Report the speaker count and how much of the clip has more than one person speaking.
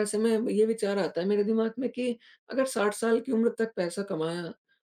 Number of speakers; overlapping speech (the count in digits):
1, no overlap